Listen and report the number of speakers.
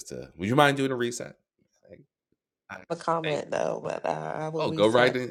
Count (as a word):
two